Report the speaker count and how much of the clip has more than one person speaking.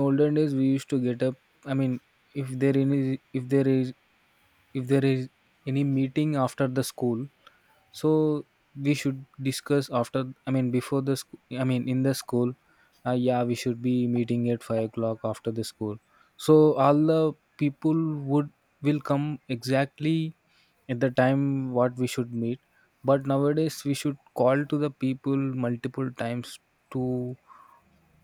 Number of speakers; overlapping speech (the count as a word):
one, no overlap